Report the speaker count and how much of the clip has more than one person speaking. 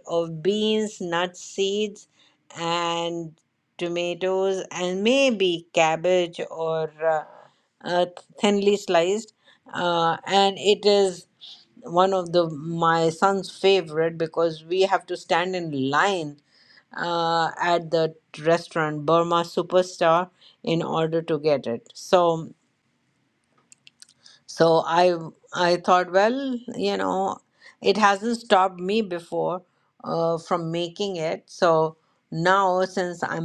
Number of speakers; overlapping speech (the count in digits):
1, no overlap